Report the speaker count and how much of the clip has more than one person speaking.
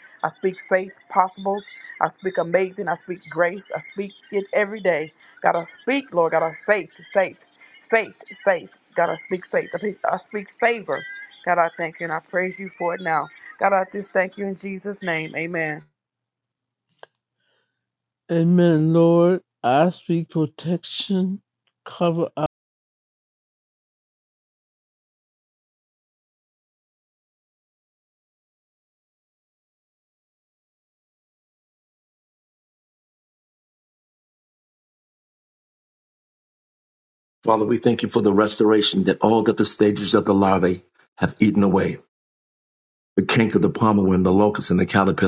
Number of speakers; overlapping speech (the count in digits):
3, no overlap